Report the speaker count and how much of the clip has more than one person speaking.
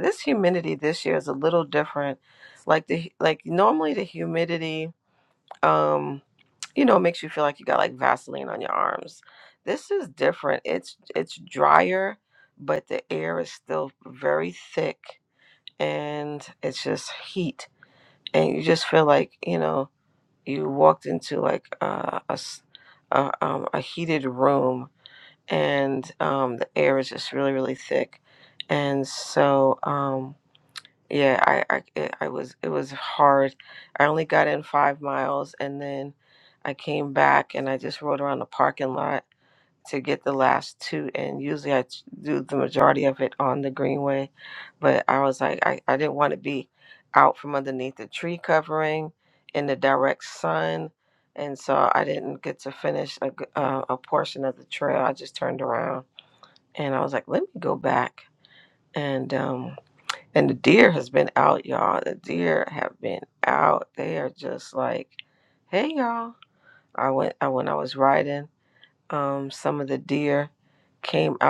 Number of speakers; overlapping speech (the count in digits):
1, no overlap